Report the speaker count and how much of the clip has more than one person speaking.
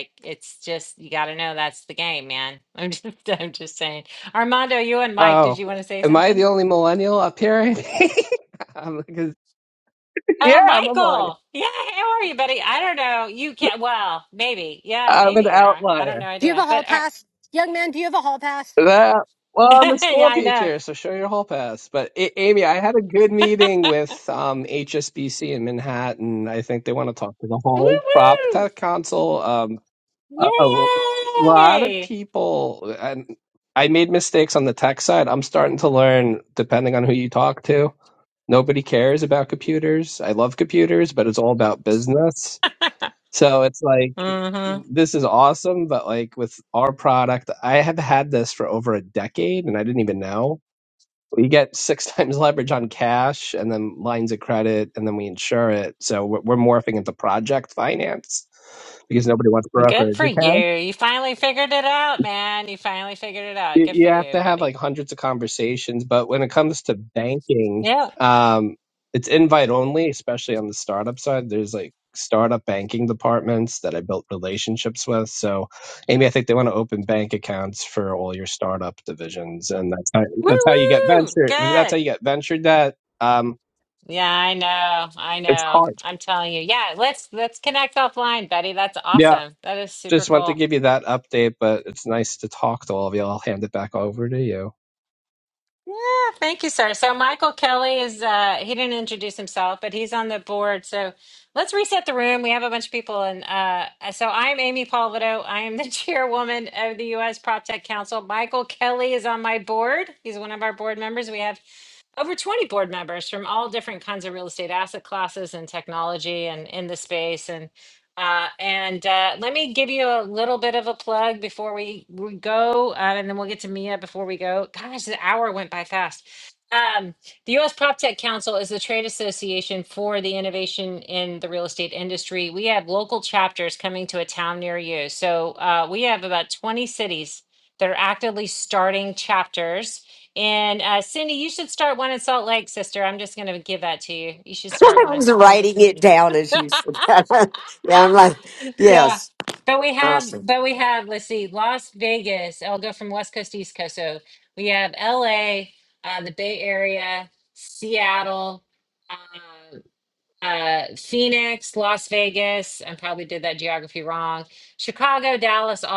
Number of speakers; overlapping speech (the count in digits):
4, about 7%